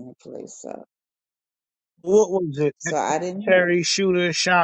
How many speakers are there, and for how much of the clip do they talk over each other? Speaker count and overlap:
2, about 4%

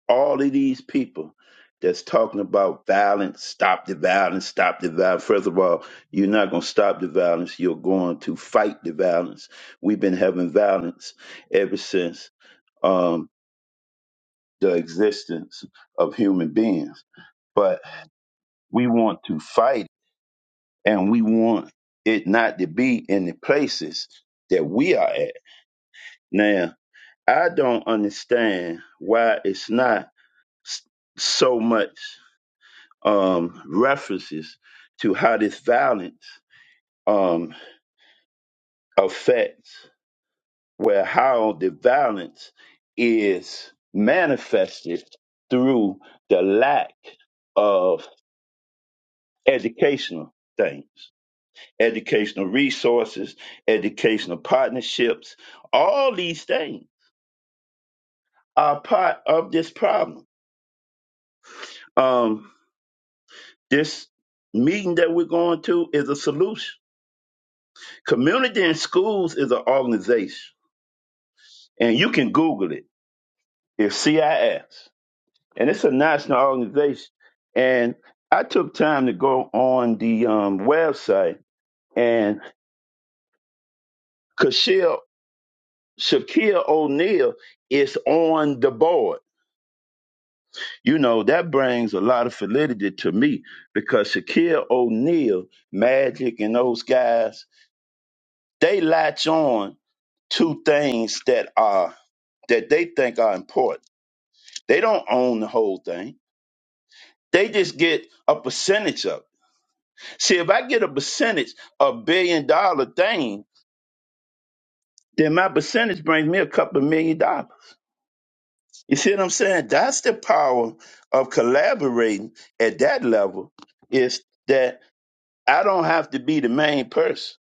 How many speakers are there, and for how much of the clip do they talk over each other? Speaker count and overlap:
1, no overlap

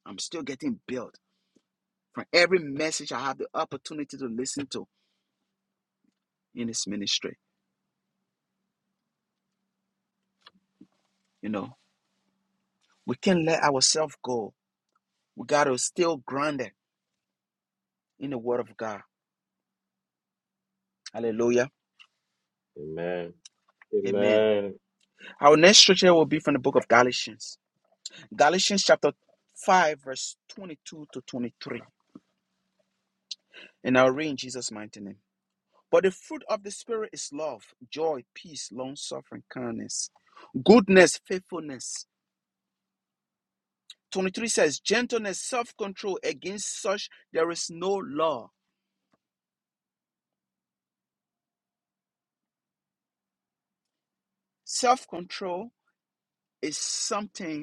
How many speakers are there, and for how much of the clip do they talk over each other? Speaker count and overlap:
2, about 1%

